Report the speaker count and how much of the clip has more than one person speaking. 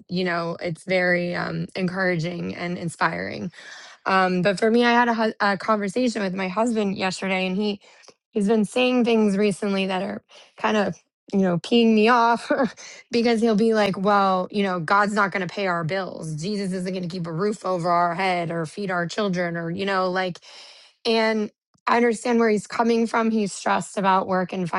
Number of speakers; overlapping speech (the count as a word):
one, no overlap